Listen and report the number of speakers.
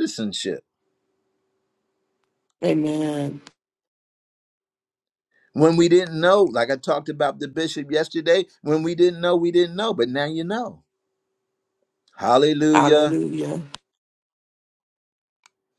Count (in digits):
2